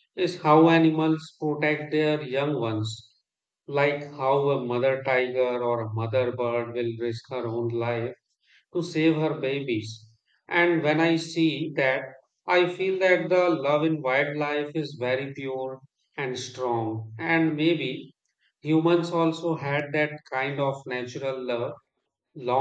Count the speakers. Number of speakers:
1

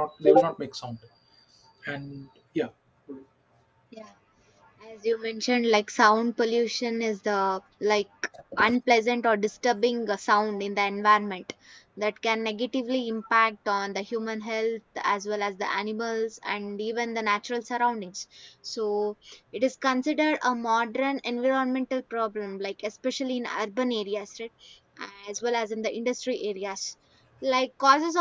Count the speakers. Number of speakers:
2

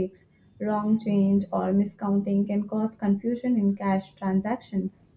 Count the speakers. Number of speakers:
1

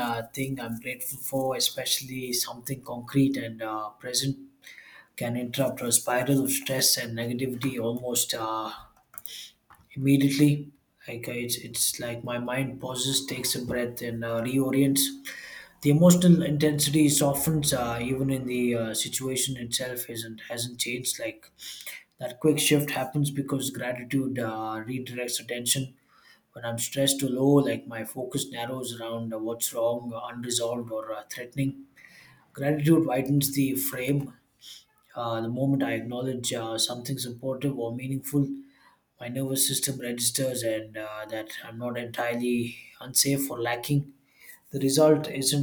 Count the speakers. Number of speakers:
1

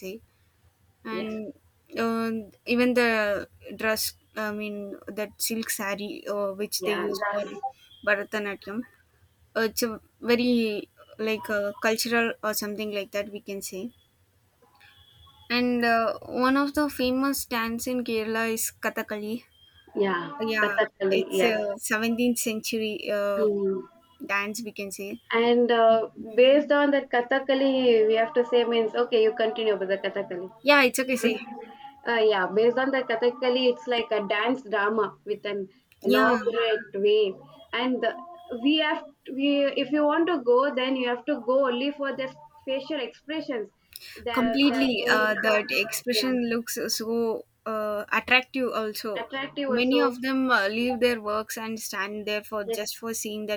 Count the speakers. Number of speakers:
2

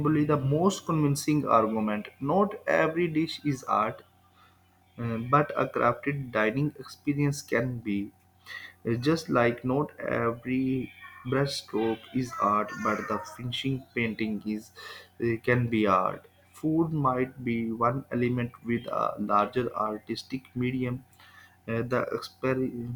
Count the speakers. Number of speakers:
1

